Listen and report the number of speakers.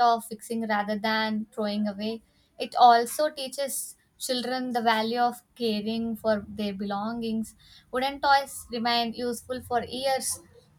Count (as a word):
one